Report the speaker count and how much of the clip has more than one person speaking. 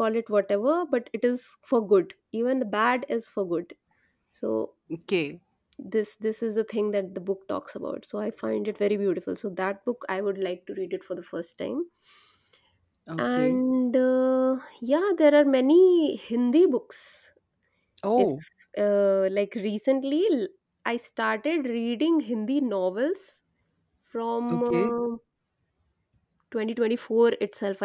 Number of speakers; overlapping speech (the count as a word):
two, about 4%